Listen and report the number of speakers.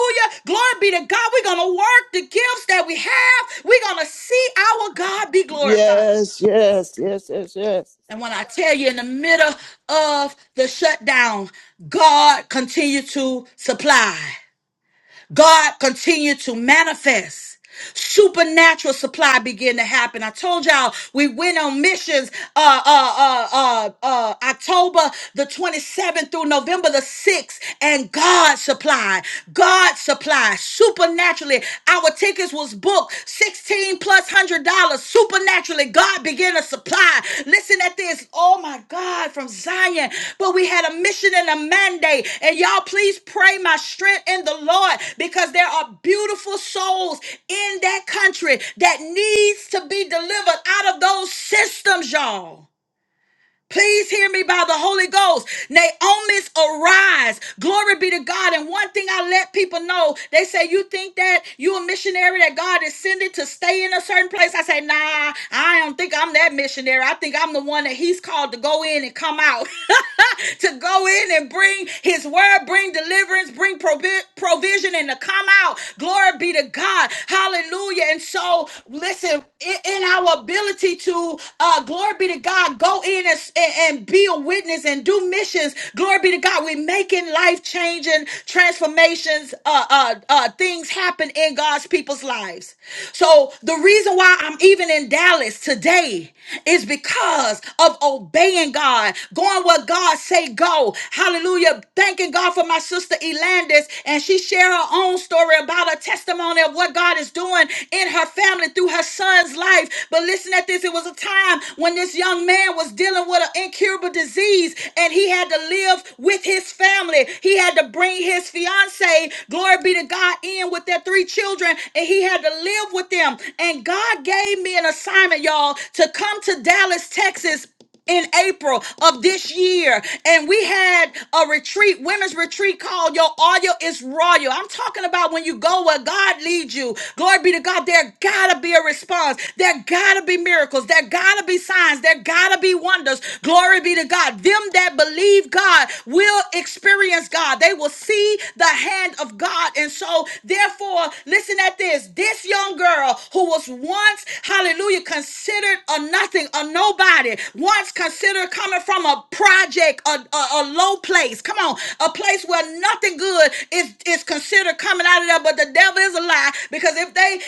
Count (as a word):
two